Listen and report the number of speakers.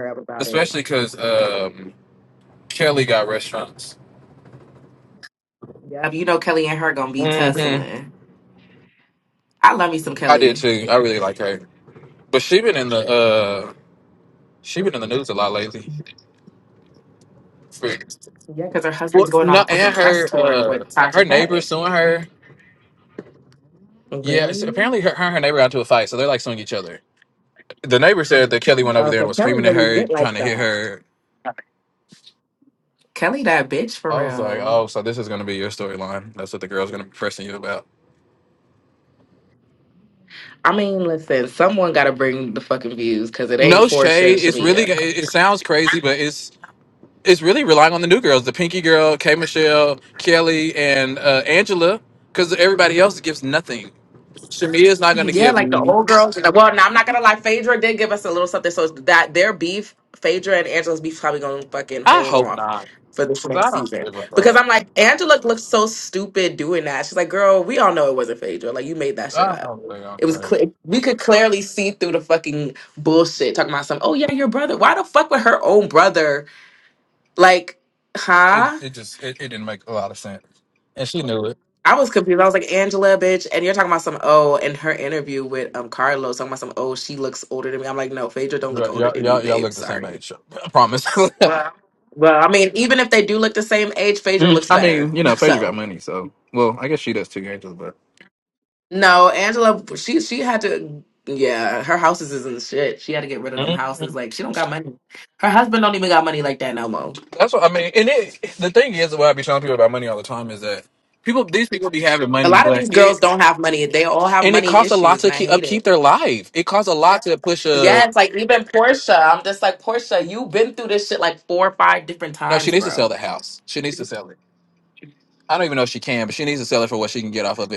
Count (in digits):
2